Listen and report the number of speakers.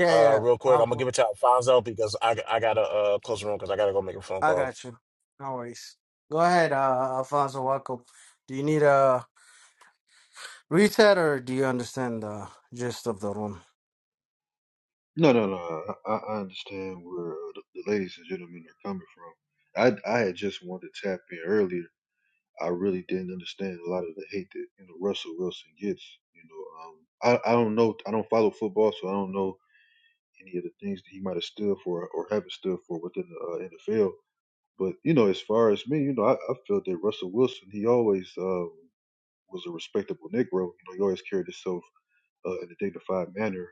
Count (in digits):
3